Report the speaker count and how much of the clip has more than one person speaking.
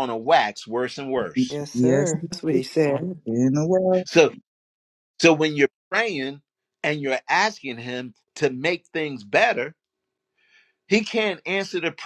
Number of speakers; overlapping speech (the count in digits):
3, about 4%